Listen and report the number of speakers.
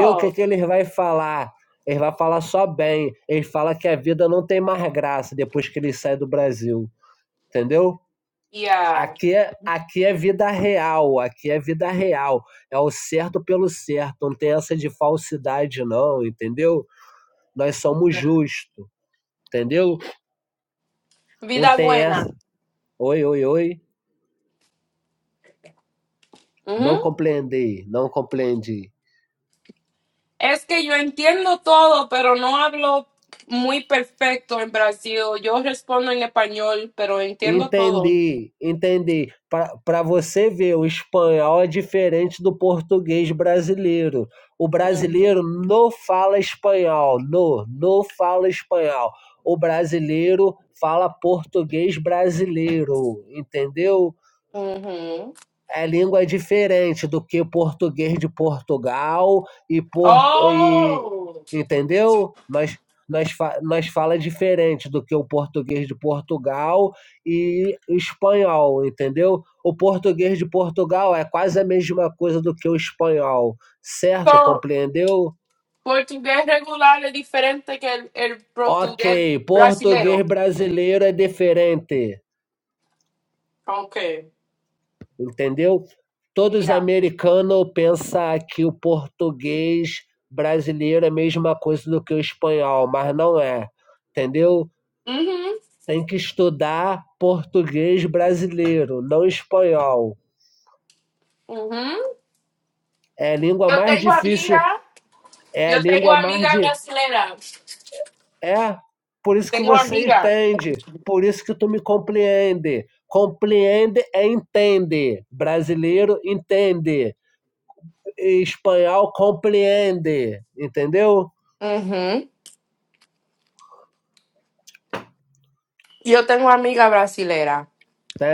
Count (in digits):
2